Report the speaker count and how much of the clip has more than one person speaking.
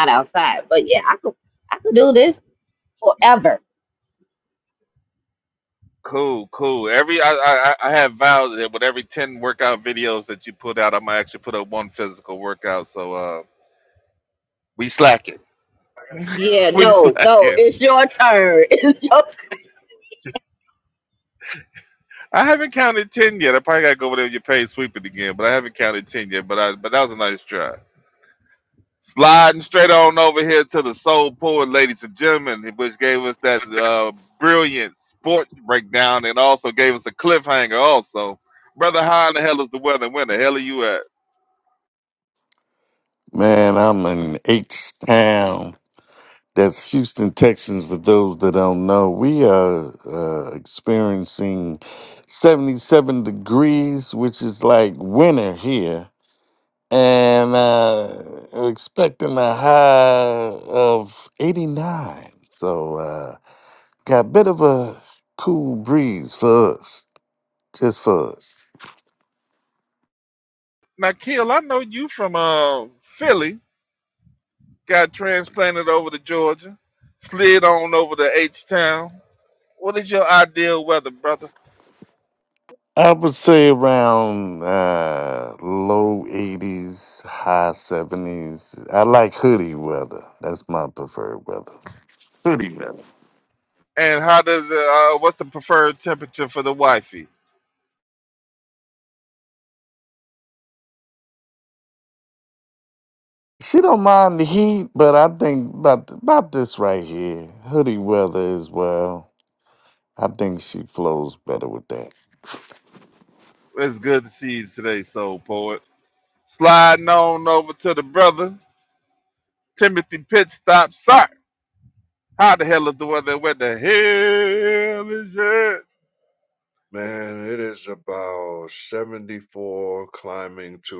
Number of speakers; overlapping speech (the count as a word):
four, about 1%